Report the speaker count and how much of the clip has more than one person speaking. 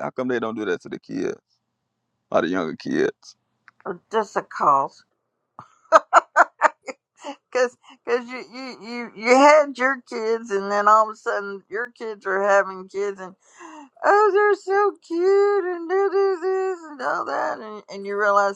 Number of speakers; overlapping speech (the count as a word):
two, no overlap